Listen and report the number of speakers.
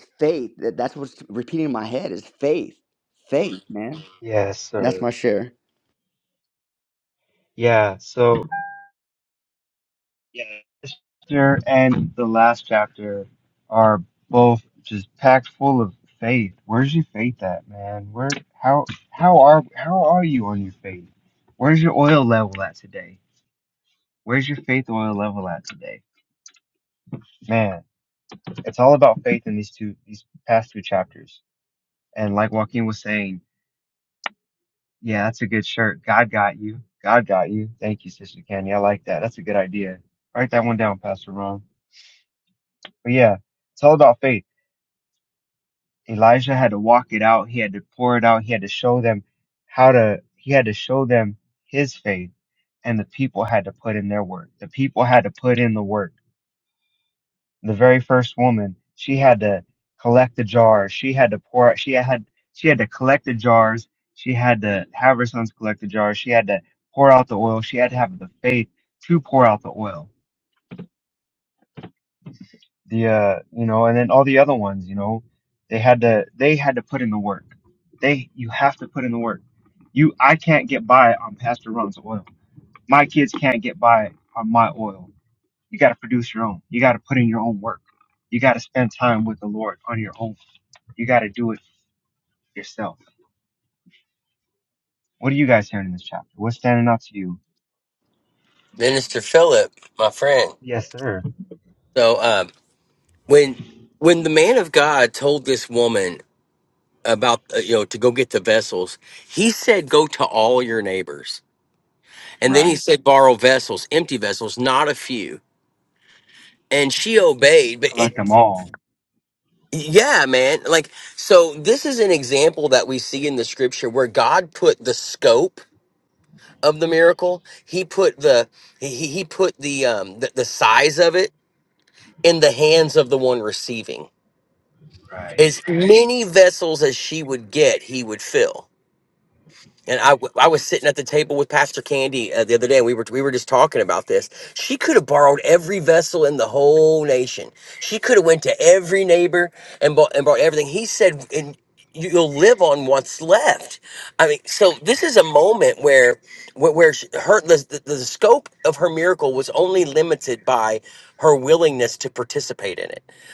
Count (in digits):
3